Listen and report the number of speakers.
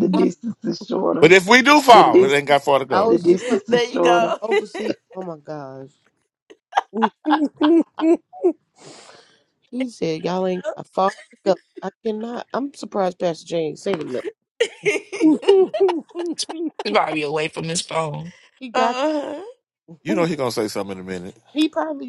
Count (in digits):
5